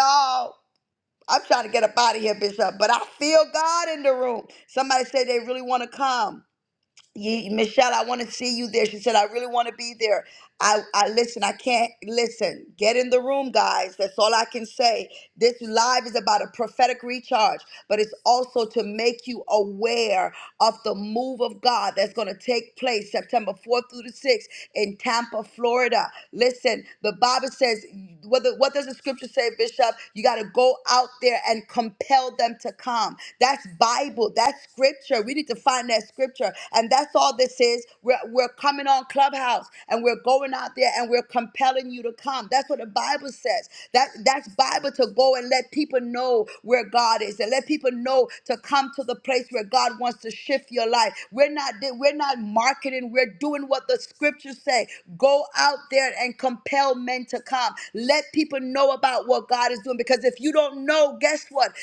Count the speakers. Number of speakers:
1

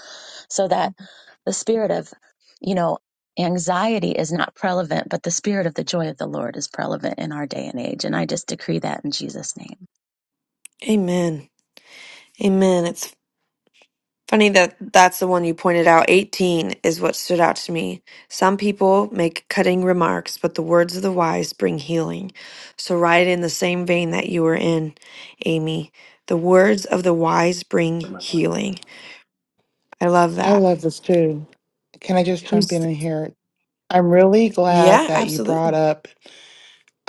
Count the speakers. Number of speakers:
3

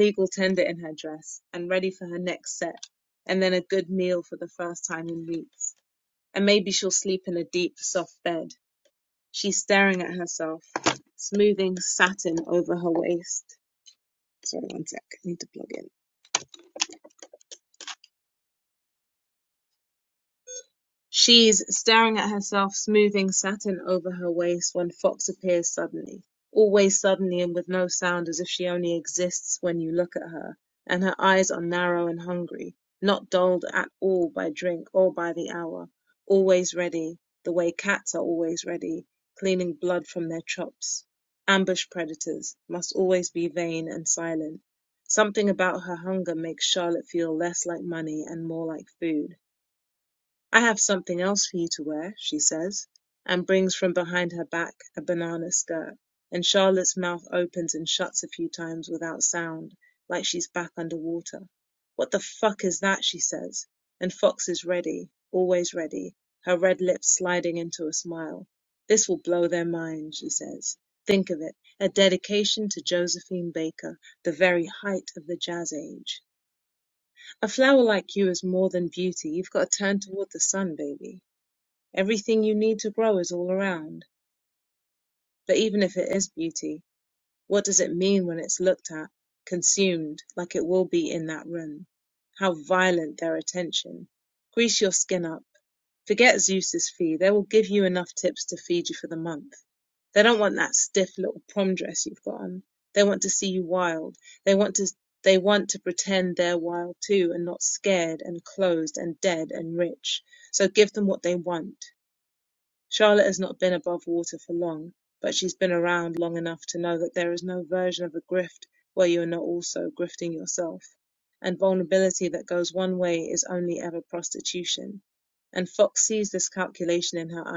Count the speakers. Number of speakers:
1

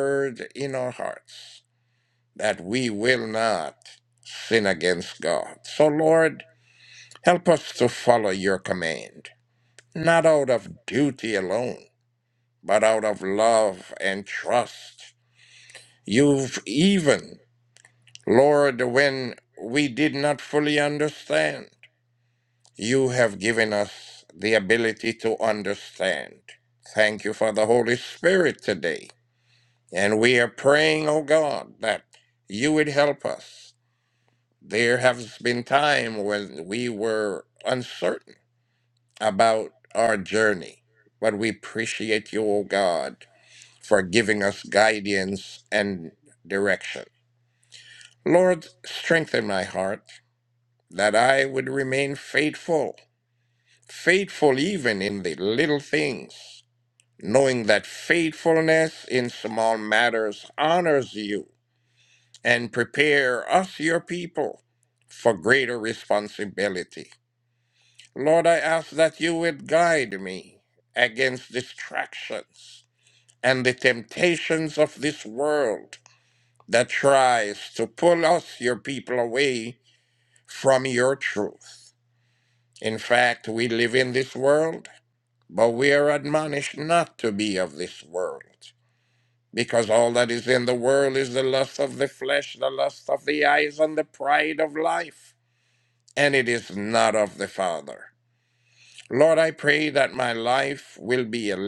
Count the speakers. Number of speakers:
1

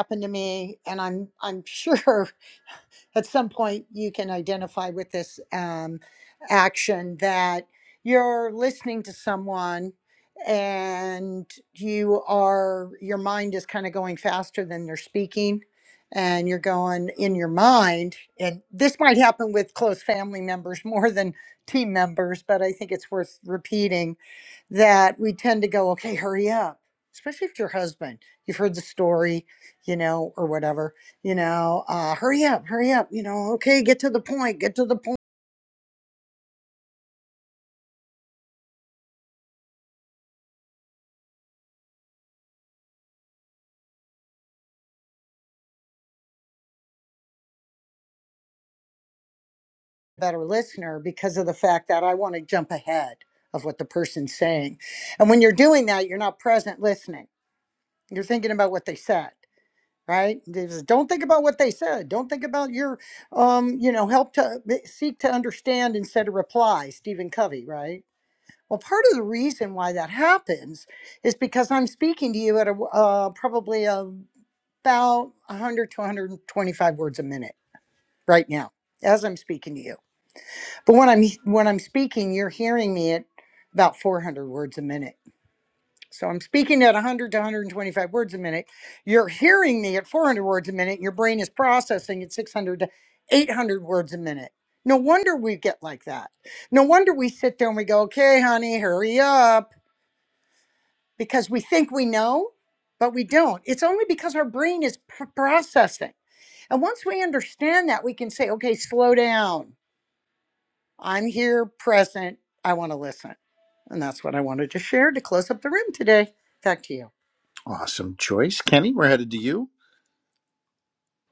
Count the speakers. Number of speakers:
2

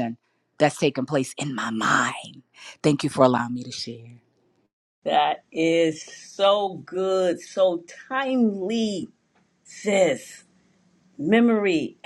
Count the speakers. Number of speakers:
2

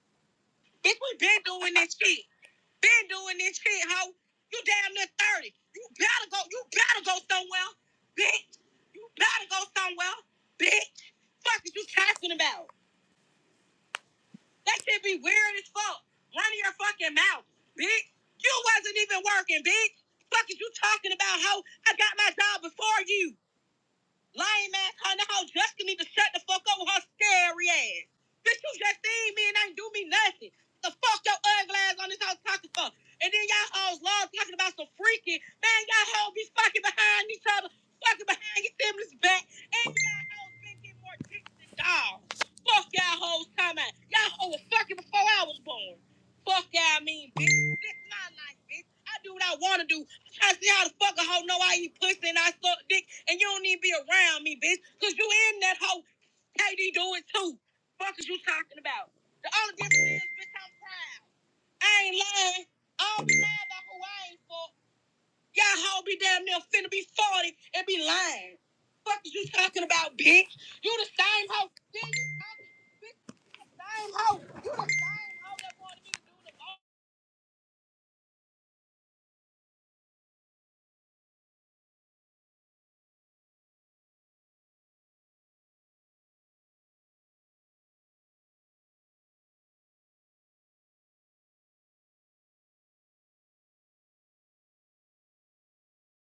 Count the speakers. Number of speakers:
1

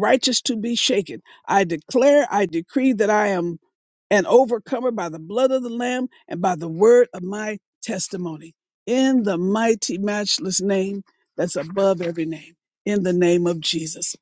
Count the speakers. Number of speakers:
1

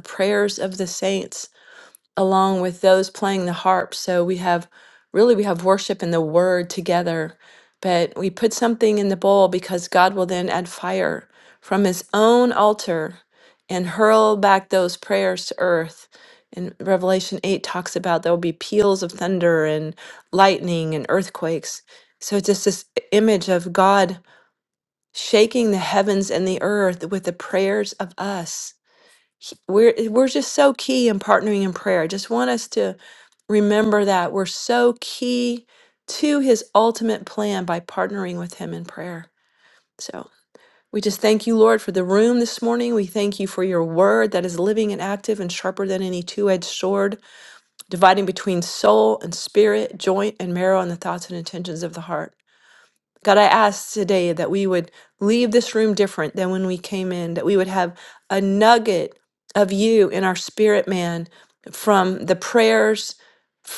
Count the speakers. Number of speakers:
1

